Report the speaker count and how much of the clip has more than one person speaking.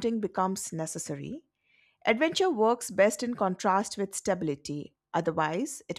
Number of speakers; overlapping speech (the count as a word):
one, no overlap